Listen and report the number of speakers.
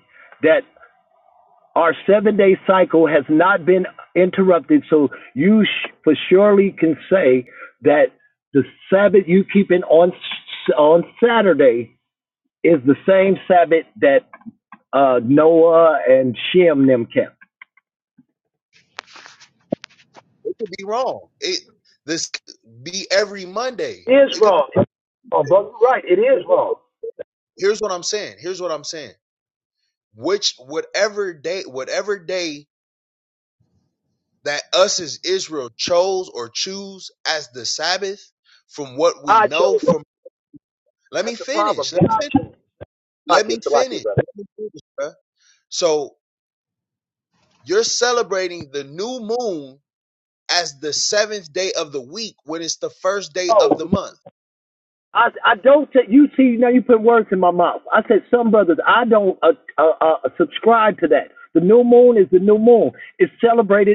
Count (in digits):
2